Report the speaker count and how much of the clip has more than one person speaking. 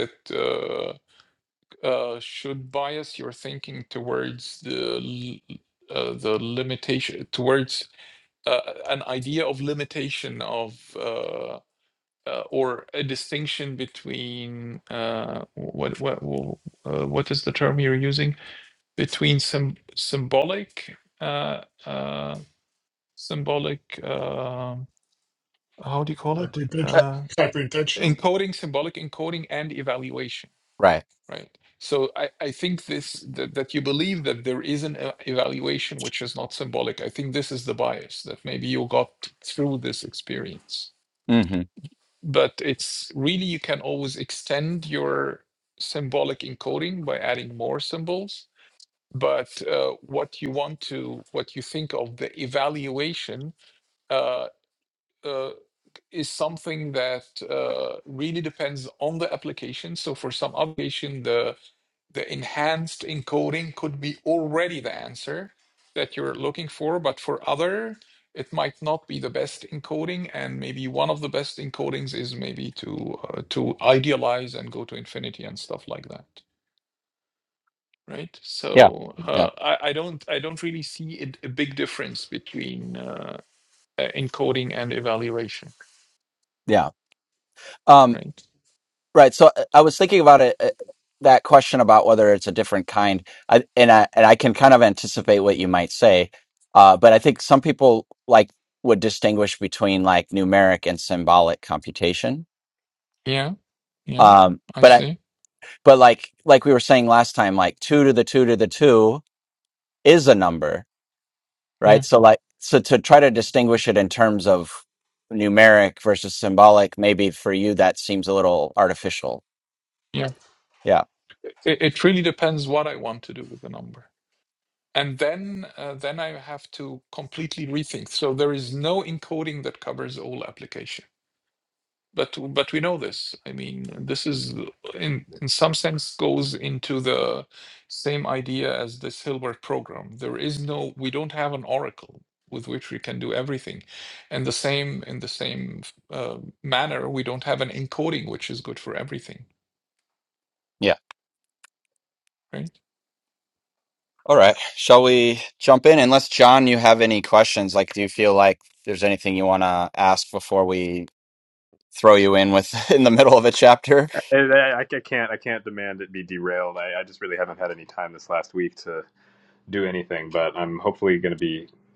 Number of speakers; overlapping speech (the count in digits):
4, about 1%